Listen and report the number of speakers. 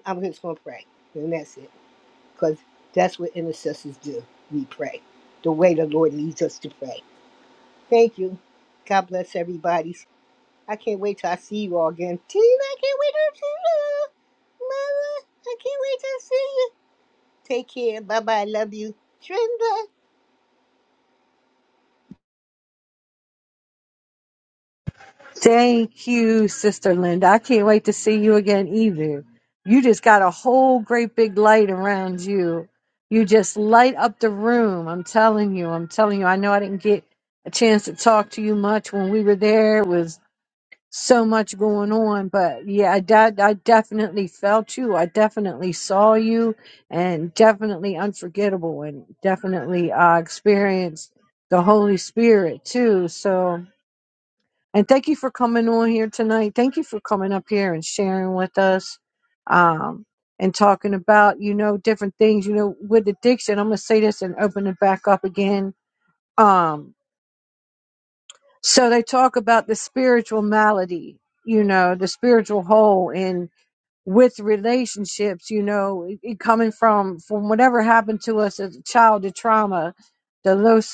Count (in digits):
2